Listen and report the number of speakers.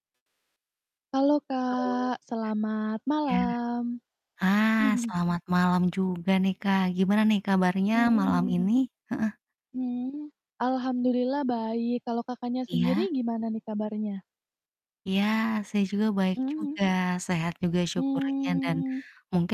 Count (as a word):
two